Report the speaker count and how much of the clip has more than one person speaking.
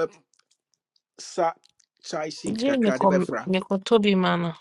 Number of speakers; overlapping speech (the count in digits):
2, about 15%